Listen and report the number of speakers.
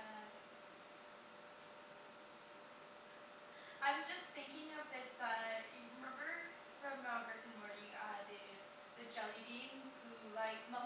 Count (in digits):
1